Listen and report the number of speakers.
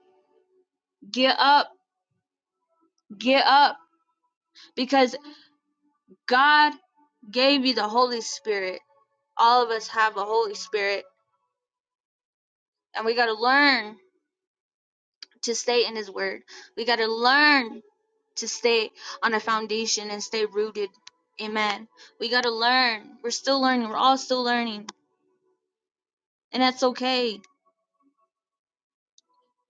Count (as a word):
one